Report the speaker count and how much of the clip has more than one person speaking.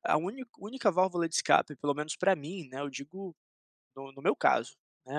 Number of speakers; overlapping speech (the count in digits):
1, no overlap